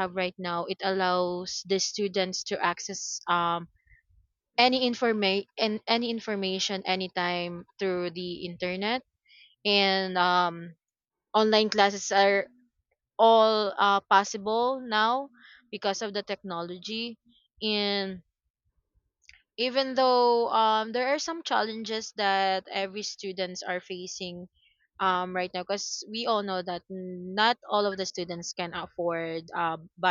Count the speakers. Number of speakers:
1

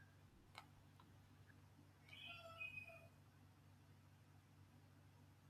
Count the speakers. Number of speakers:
0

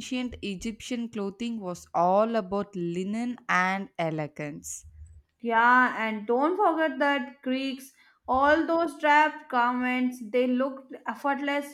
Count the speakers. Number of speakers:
2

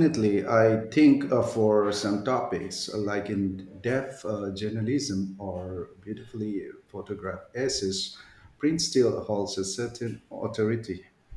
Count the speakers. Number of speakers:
1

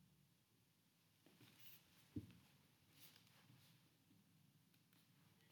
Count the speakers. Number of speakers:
0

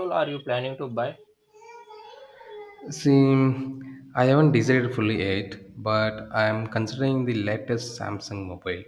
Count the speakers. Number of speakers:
2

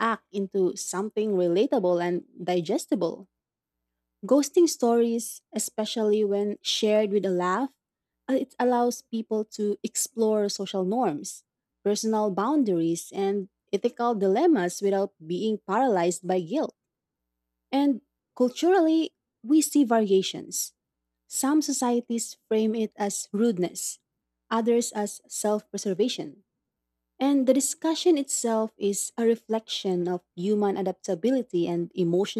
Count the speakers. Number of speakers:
1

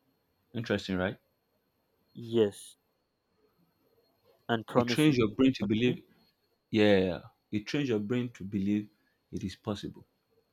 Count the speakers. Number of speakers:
2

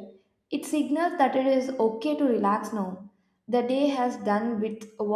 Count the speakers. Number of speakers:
1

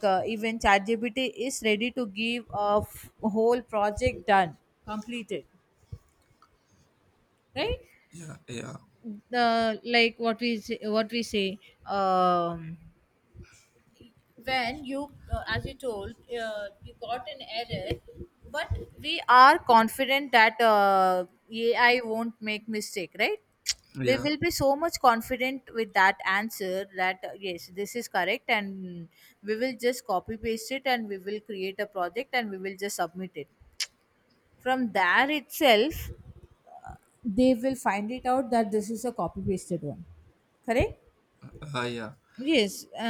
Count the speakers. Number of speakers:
2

